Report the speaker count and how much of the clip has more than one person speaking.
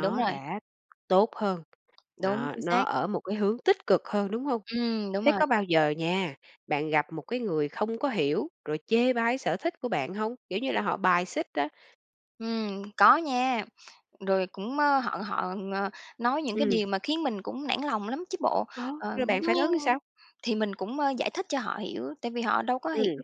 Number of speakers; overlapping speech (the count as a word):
two, about 11%